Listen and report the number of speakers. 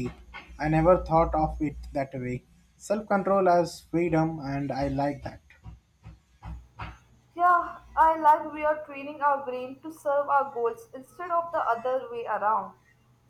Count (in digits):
2